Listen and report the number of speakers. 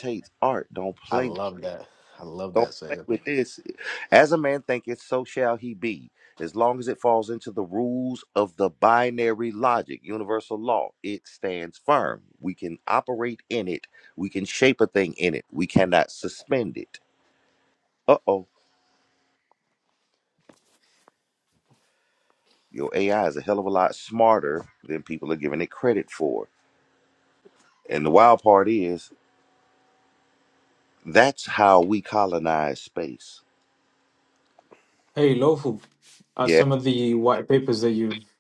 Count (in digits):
3